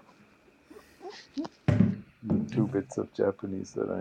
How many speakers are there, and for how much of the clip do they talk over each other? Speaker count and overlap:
one, no overlap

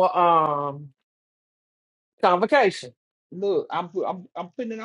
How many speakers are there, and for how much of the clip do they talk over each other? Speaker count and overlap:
two, no overlap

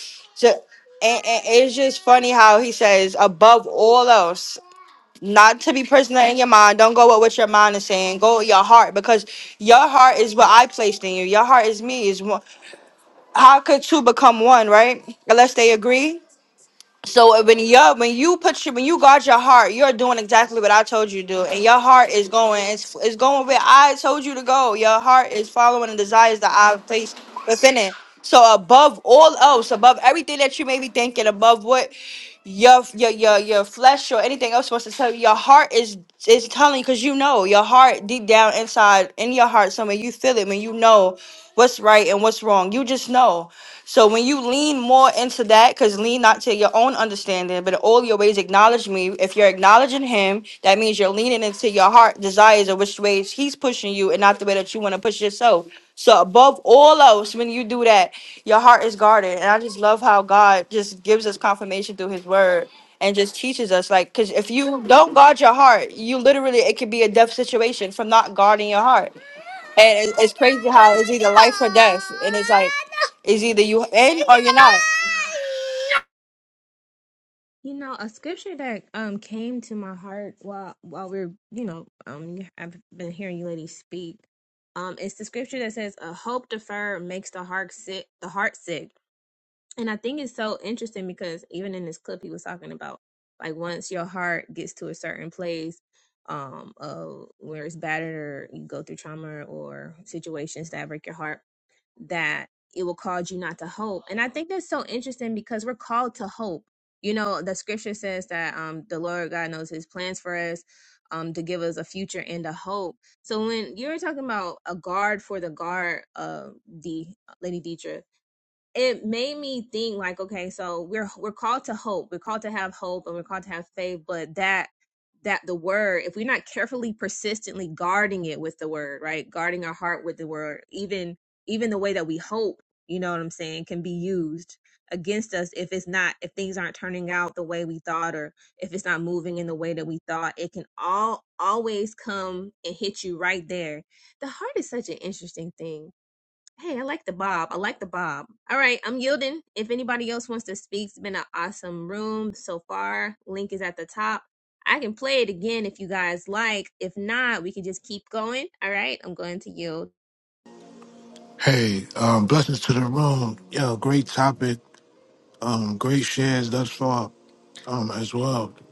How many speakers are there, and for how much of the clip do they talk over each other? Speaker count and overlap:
three, no overlap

